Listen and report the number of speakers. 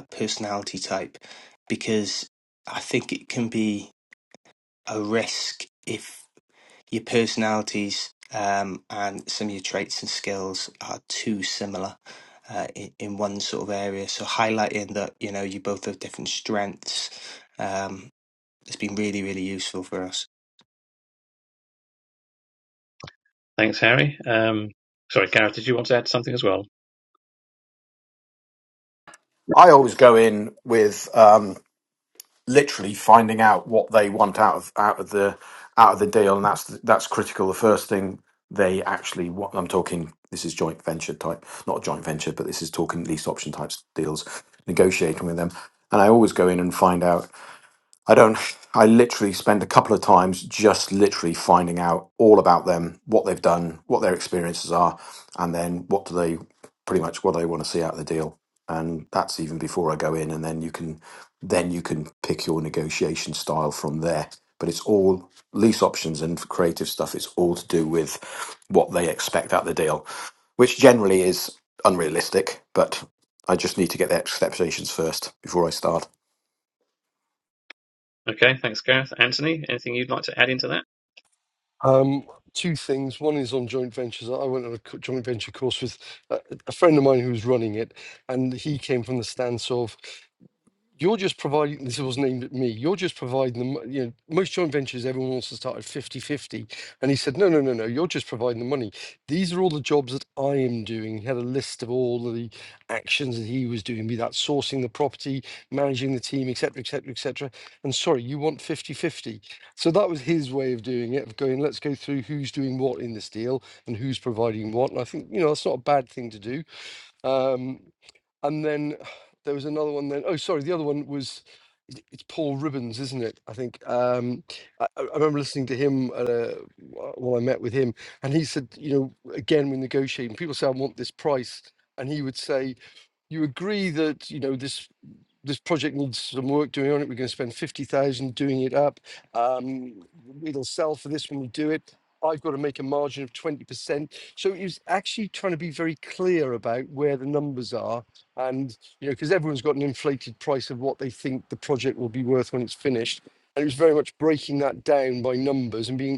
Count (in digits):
4